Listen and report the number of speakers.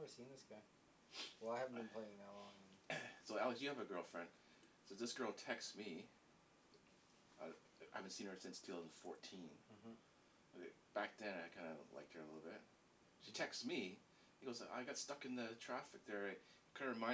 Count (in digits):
2